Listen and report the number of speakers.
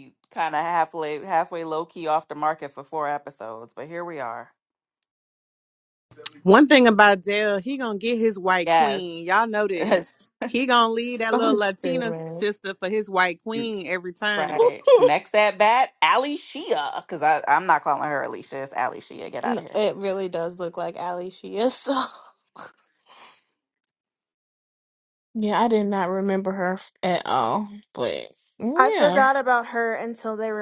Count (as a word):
five